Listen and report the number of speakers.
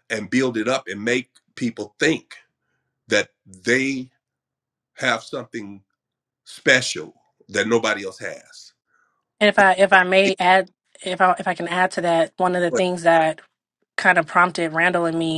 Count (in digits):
2